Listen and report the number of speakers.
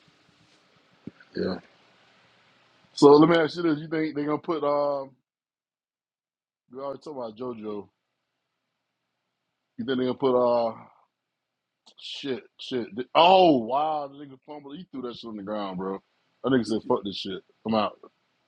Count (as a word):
one